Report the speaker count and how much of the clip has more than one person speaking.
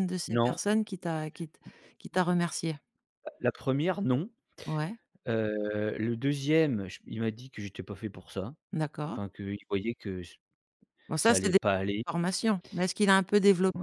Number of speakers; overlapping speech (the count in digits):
2, about 5%